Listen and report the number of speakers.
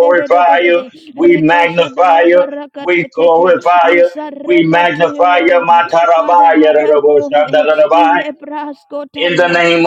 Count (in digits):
2